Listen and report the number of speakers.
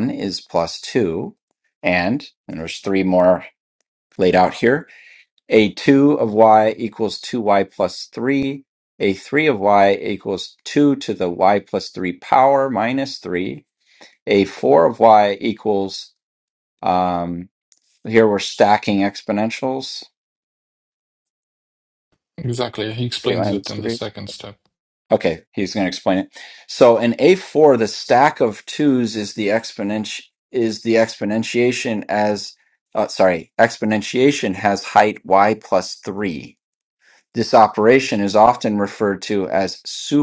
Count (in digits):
2